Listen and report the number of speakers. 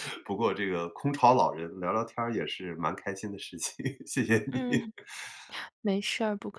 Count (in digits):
2